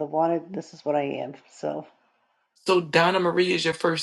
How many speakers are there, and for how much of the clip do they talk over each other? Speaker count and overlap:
2, no overlap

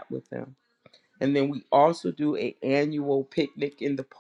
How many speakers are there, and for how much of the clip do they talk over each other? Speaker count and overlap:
1, no overlap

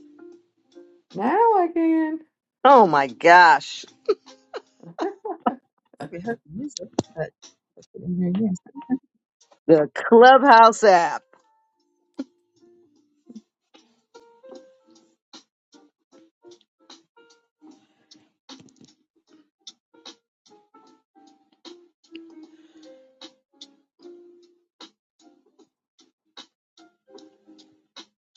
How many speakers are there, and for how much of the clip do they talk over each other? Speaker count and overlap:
3, no overlap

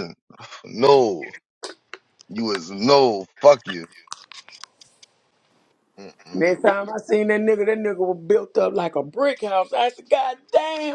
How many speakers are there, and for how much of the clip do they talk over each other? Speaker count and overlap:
2, about 1%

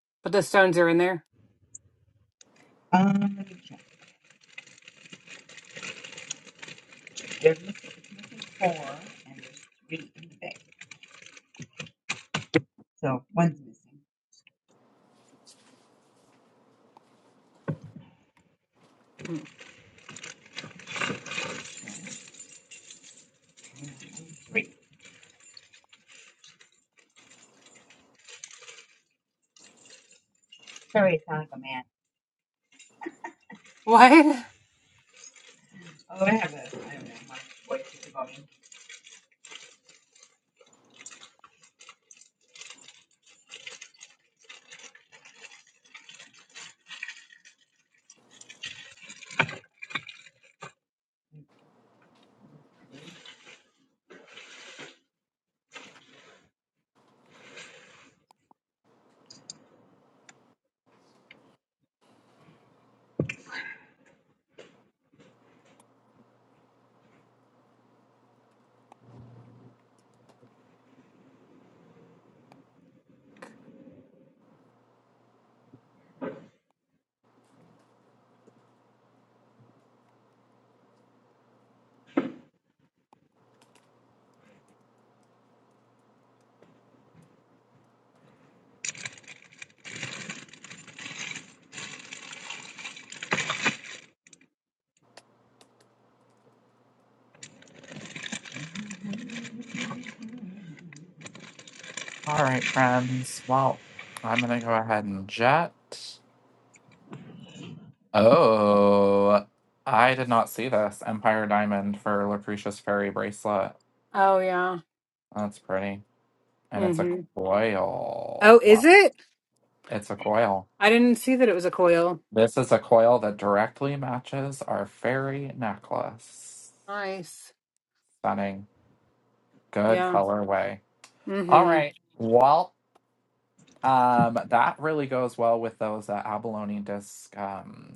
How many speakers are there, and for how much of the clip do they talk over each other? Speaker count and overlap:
3, about 1%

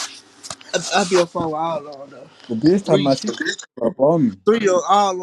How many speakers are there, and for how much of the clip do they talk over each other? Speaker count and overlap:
2, about 6%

